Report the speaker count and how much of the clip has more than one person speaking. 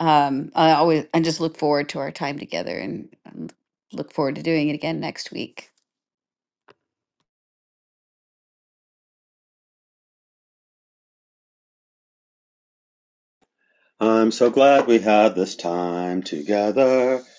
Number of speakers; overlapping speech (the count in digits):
2, no overlap